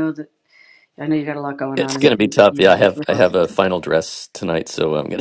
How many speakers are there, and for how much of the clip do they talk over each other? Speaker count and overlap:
2, about 33%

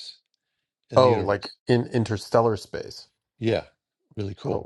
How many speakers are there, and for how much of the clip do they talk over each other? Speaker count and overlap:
2, about 15%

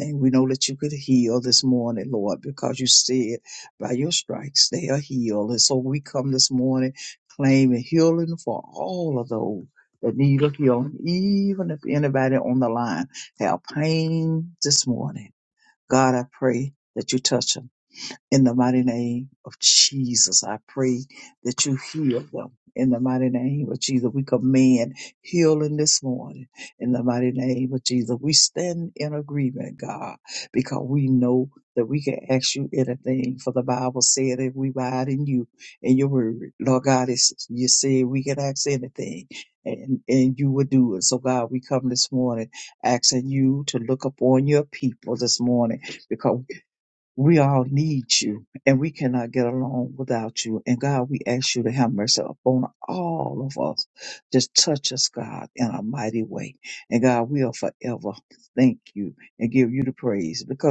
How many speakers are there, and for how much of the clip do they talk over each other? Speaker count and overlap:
1, no overlap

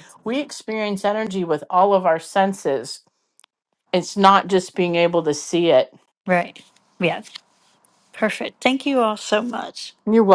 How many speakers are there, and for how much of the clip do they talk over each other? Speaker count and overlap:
2, no overlap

